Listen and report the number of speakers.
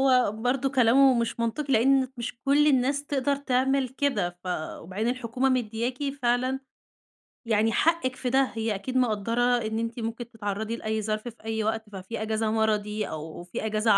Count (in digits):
1